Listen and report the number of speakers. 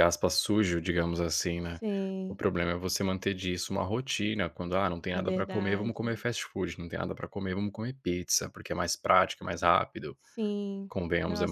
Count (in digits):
2